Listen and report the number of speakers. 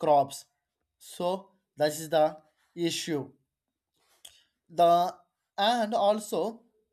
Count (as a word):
one